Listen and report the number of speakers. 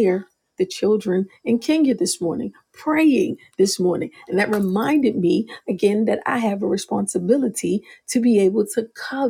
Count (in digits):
1